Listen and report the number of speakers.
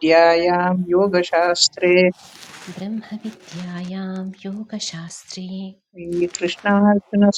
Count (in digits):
2